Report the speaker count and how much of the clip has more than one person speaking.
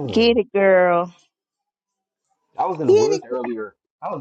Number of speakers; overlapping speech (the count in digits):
2, about 14%